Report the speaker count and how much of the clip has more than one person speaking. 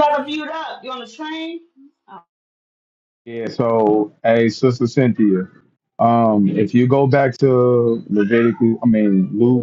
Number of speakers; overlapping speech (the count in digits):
2, no overlap